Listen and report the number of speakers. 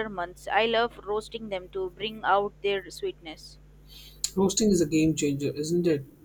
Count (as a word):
two